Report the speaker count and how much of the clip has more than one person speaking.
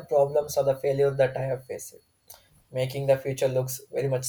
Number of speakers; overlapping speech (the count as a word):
one, no overlap